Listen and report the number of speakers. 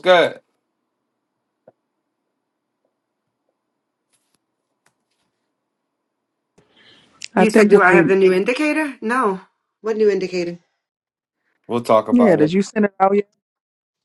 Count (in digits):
3